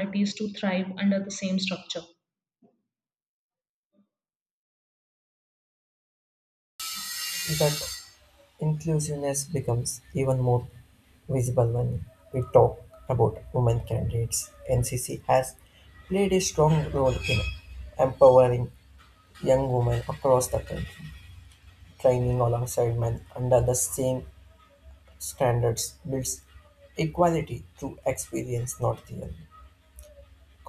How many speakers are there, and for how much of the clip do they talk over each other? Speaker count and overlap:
two, no overlap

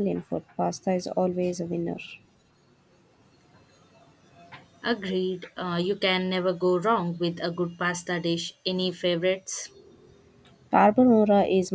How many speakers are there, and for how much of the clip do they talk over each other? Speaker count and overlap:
two, no overlap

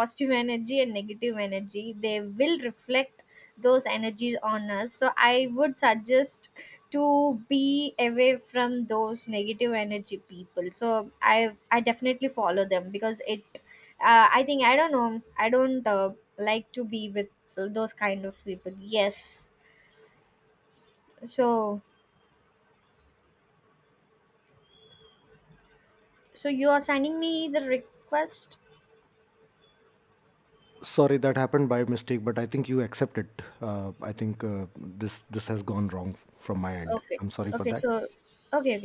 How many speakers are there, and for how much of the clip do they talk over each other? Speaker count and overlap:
two, about 1%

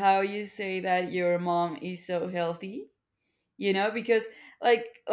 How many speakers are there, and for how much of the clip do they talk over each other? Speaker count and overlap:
one, no overlap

